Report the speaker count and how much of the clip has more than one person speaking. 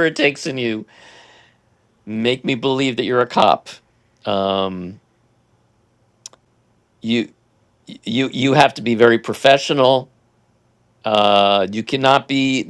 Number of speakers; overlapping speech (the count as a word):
one, no overlap